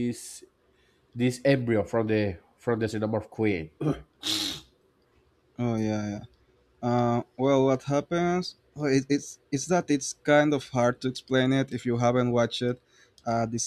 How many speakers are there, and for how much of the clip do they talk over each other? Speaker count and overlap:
two, no overlap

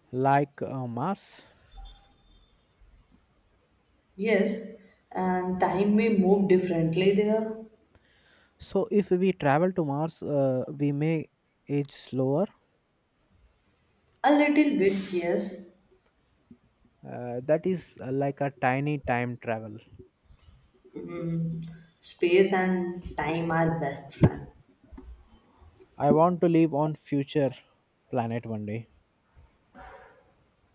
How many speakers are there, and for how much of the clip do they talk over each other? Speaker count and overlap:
two, no overlap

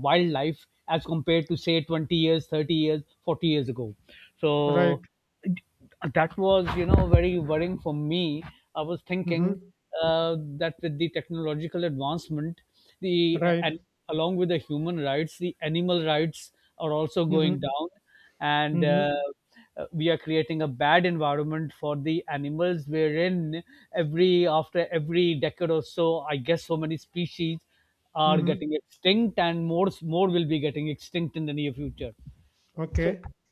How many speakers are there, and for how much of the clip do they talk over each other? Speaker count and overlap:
two, about 5%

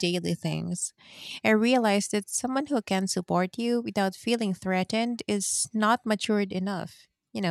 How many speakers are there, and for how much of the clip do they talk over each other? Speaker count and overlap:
one, no overlap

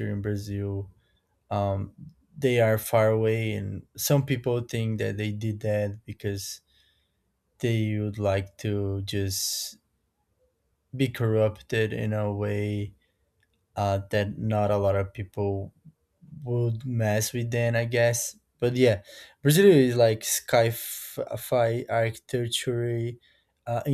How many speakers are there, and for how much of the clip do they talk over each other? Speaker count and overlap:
one, no overlap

